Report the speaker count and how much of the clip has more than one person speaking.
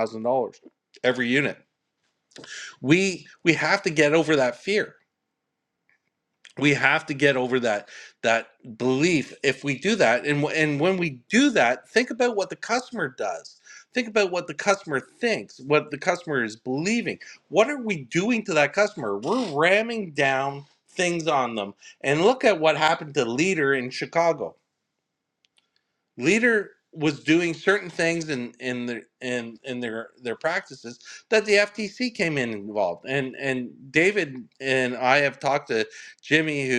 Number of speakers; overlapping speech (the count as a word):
one, no overlap